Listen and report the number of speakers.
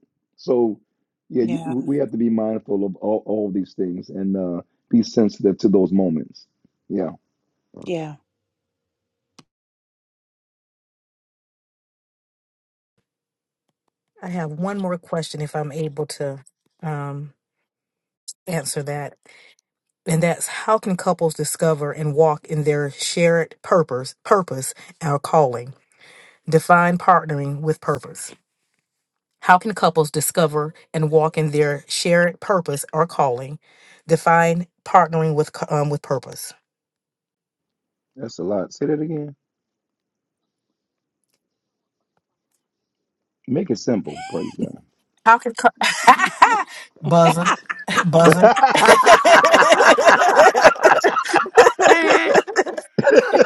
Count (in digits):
3